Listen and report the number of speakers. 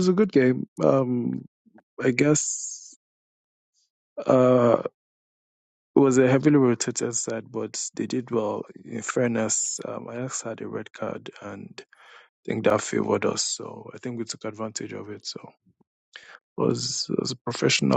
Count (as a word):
one